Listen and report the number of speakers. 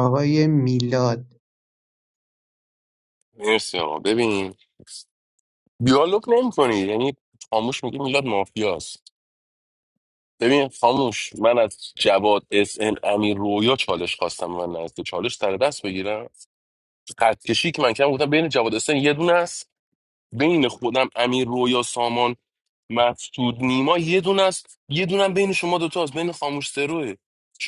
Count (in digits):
2